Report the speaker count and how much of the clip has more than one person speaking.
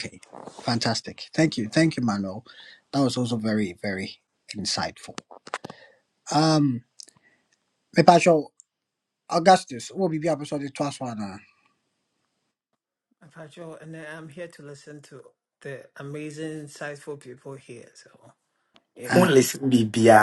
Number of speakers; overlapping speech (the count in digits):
3, about 1%